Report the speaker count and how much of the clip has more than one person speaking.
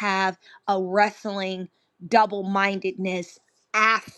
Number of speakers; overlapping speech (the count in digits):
1, no overlap